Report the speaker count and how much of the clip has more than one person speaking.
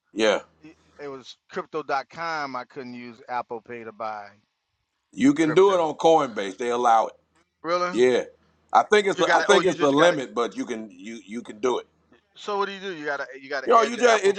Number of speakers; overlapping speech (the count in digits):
2, about 16%